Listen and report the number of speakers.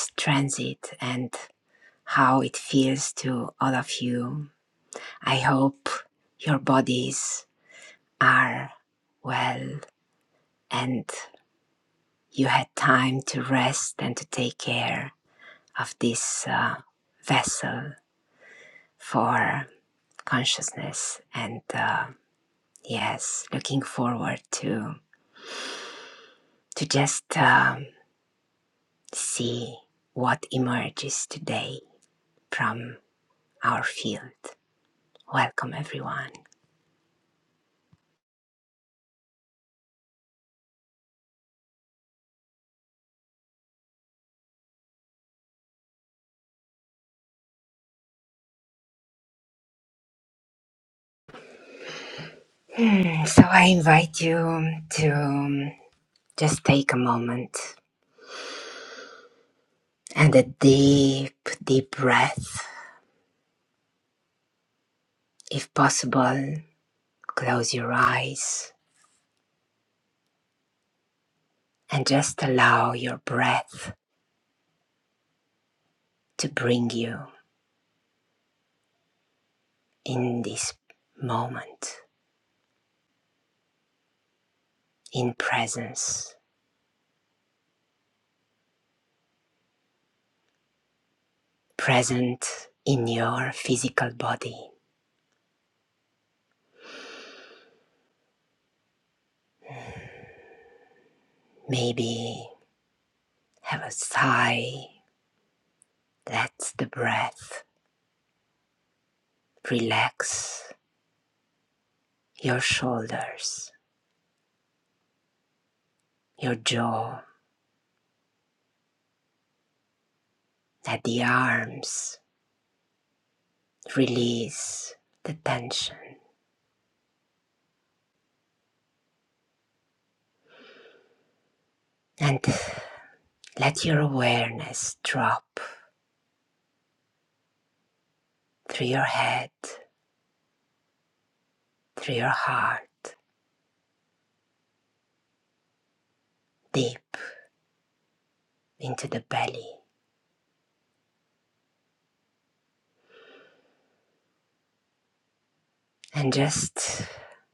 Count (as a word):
one